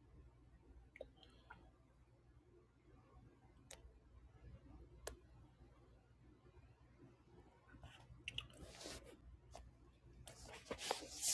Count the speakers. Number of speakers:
zero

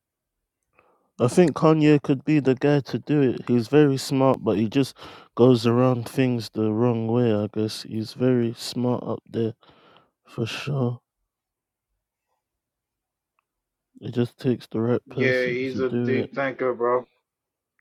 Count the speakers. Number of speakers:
two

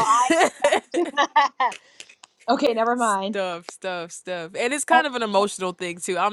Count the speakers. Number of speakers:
two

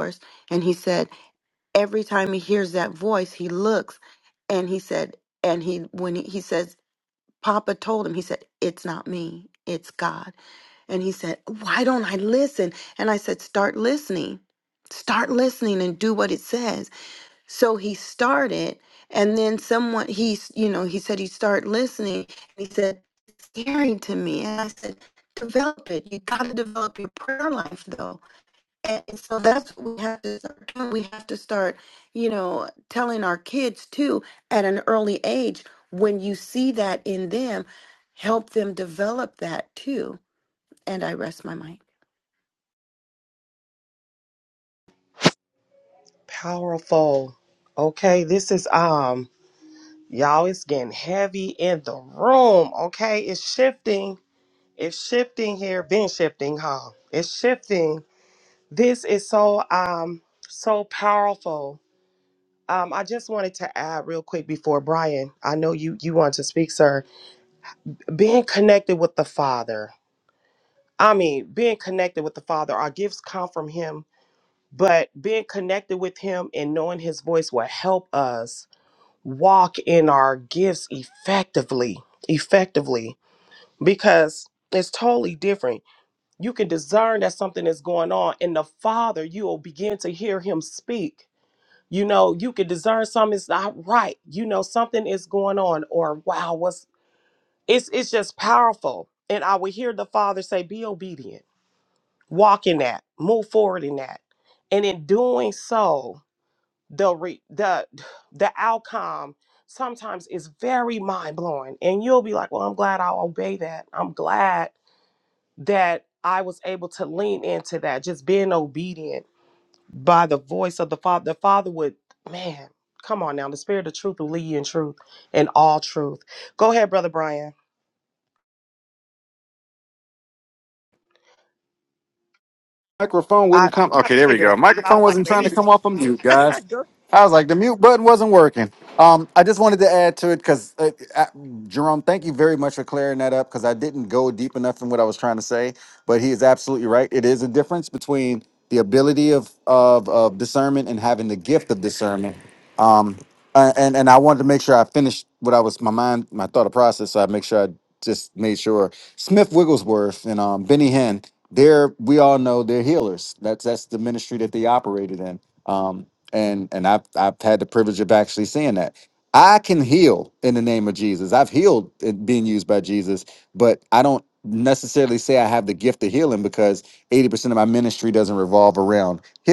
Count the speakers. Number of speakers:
three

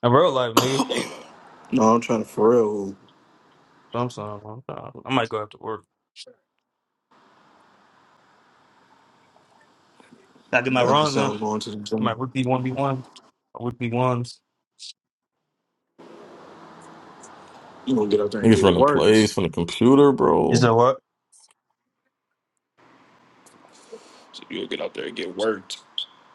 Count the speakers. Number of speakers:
three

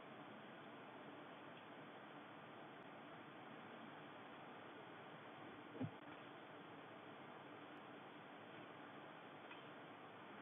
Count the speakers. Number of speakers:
zero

